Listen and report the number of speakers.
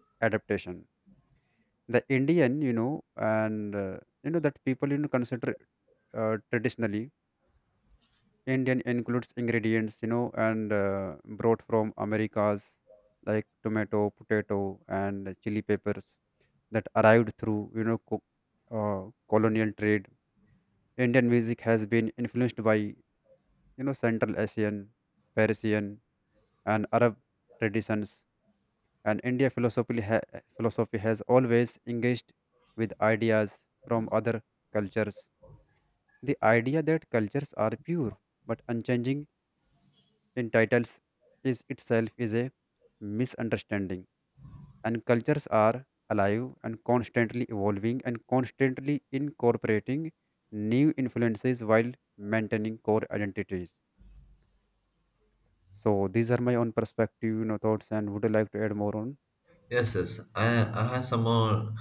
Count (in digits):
2